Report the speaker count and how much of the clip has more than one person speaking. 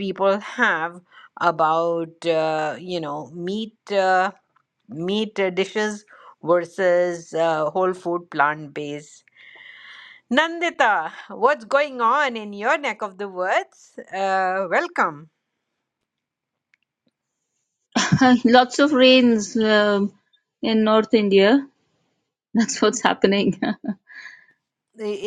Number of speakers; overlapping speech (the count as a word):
two, no overlap